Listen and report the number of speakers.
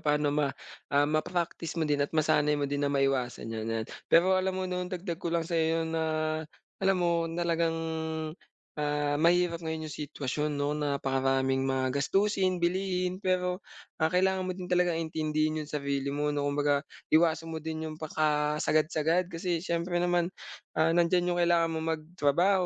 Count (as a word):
one